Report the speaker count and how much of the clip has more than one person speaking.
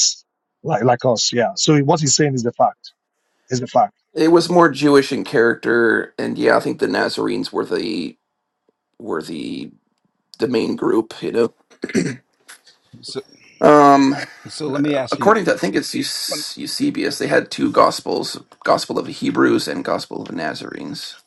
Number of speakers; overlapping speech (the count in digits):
3, about 1%